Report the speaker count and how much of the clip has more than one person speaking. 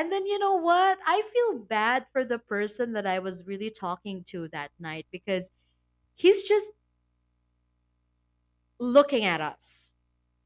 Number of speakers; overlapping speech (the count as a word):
one, no overlap